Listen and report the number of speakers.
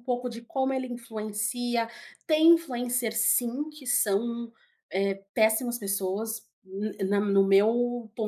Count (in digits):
1